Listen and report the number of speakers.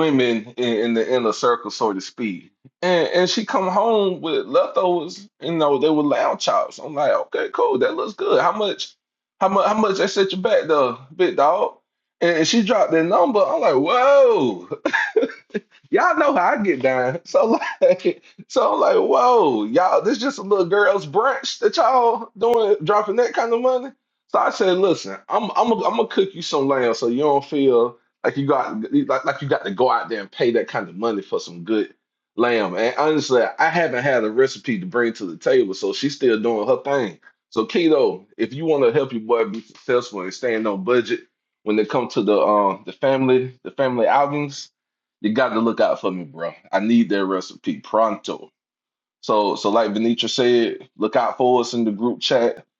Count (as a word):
one